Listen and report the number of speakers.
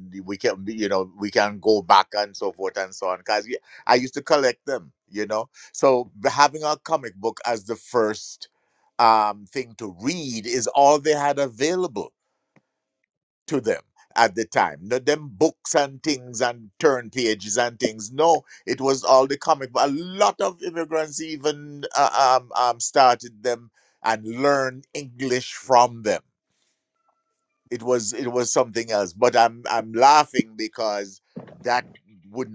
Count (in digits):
1